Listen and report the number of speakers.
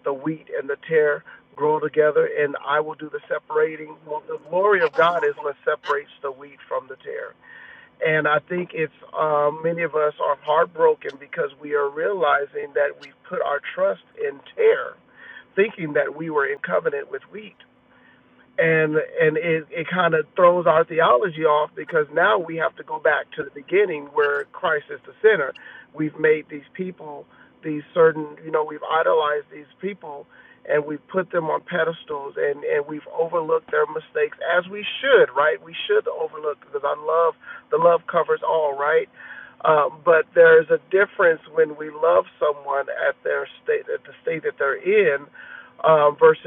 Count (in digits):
1